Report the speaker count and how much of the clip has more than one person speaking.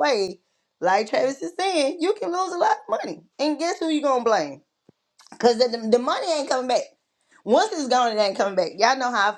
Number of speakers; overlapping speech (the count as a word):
one, no overlap